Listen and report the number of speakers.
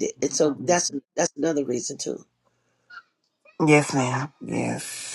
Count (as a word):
two